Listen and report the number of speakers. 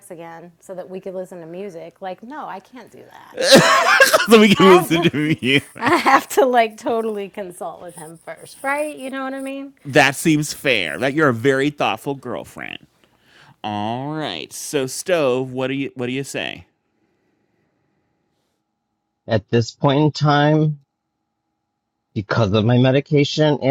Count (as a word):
three